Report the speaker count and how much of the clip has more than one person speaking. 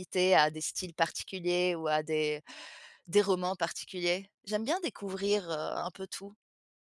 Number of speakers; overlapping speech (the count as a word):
one, no overlap